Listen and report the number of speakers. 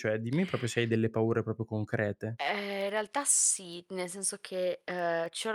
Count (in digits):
2